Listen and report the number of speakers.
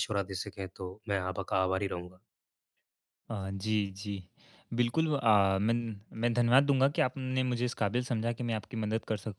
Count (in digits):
2